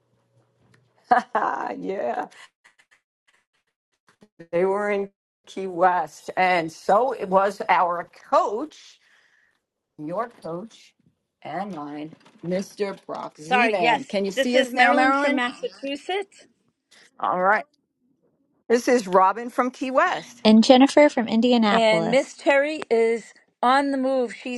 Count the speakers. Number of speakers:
3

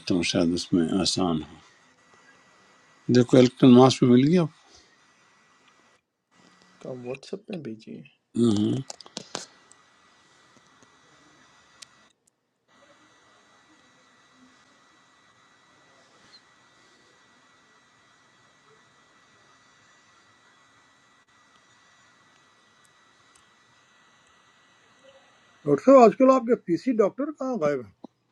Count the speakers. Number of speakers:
3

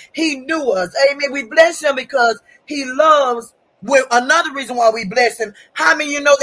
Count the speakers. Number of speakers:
1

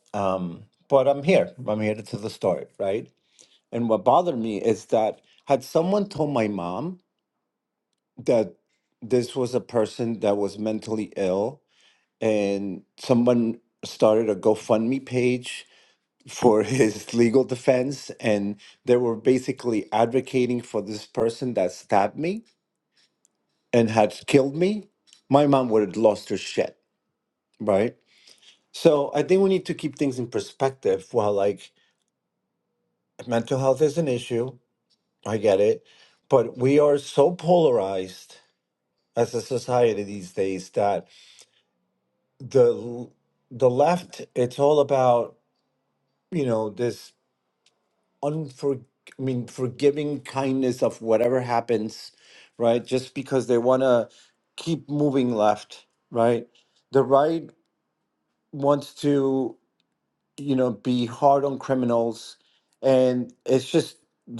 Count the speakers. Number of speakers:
1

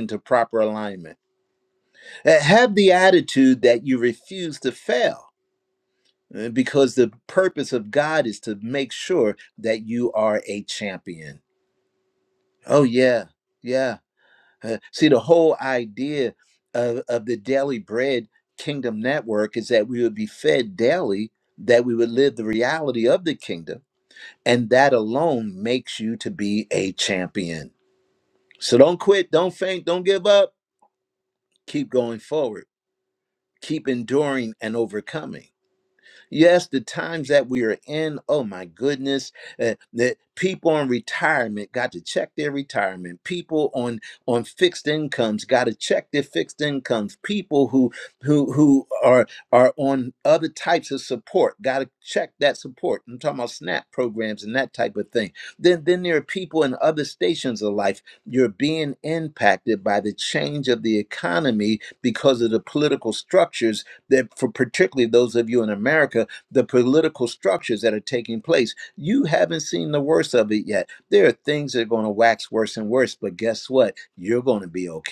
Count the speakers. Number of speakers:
1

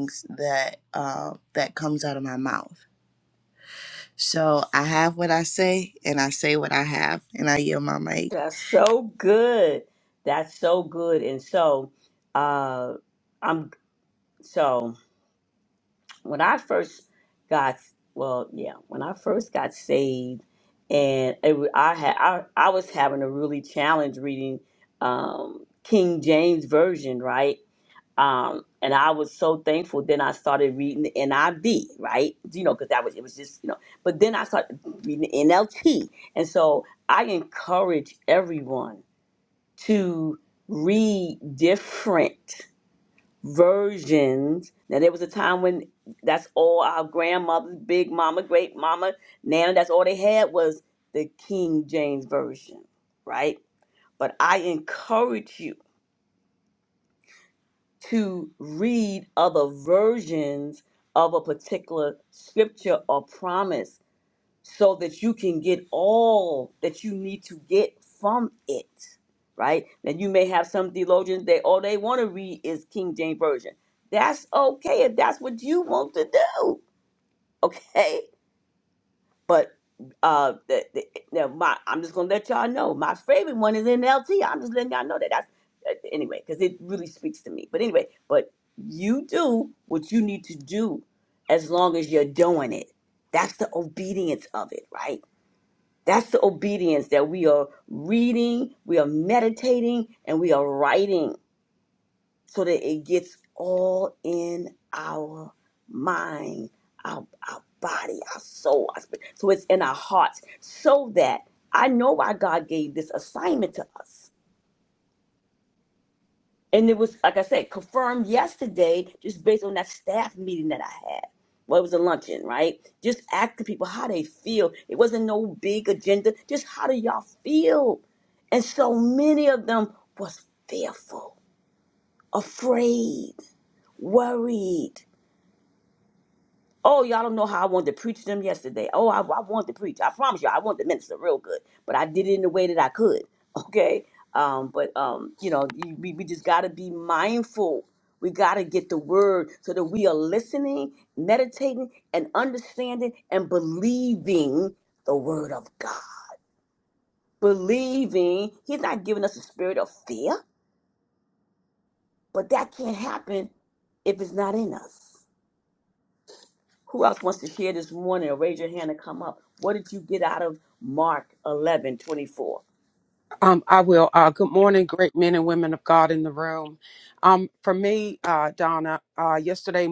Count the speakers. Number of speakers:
3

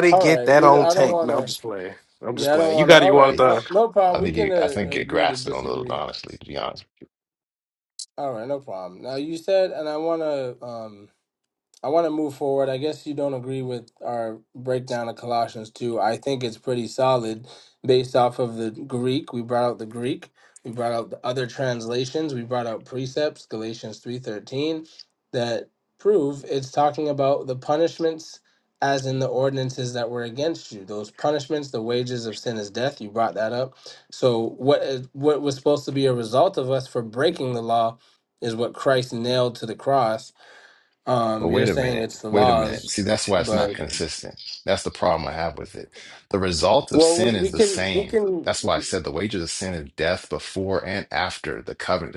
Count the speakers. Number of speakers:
3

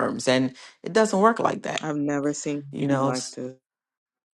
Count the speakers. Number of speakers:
2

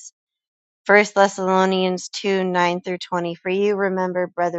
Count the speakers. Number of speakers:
1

